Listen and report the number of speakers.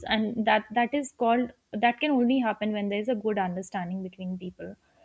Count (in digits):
1